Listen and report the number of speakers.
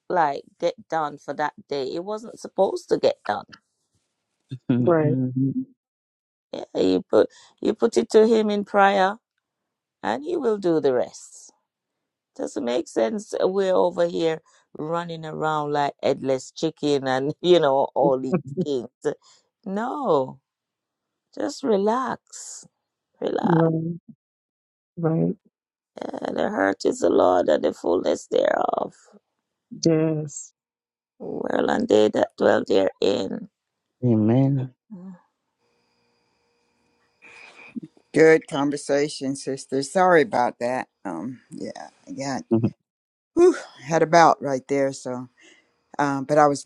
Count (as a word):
four